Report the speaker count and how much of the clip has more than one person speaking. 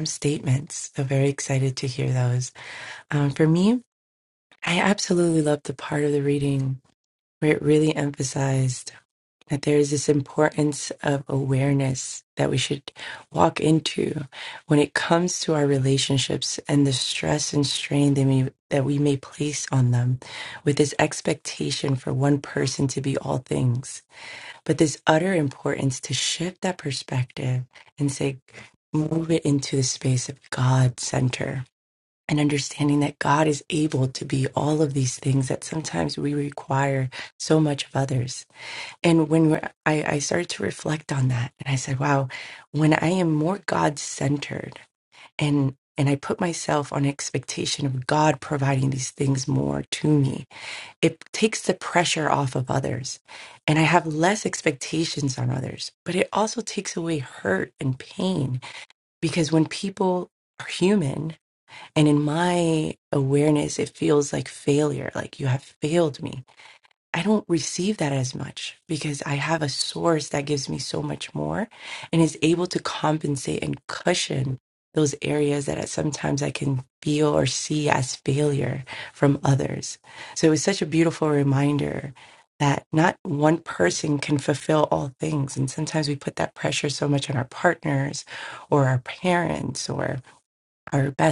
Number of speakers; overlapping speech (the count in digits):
1, no overlap